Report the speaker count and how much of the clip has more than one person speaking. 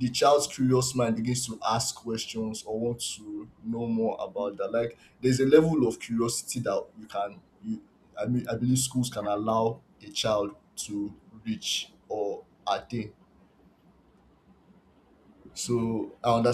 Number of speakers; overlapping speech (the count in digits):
1, no overlap